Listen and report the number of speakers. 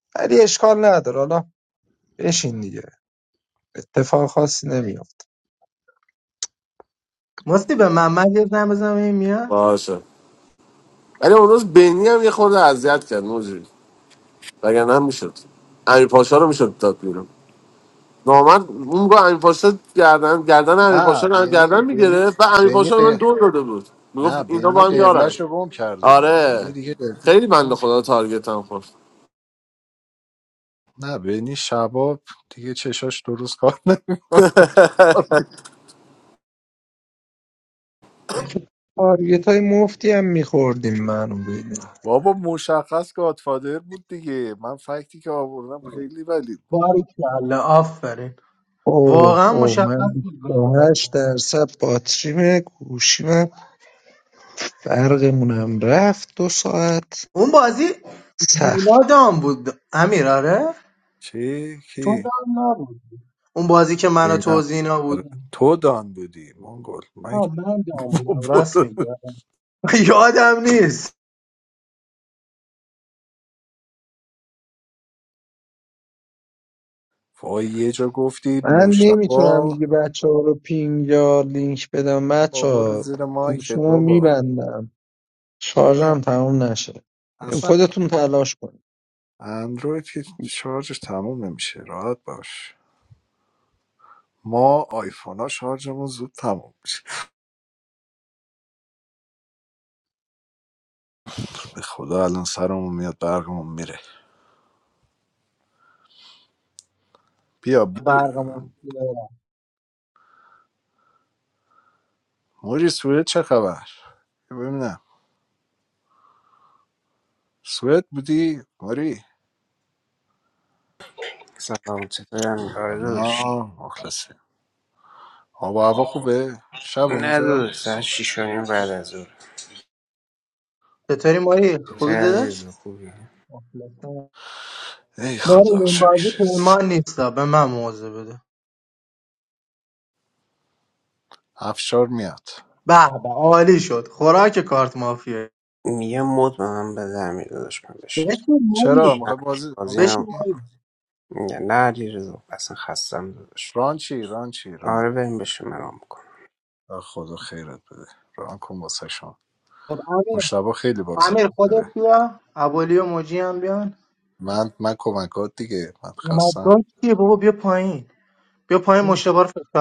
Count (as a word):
five